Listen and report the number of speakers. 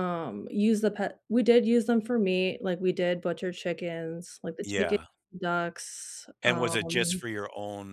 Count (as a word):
two